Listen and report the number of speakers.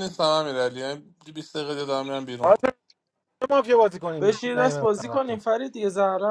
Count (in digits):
3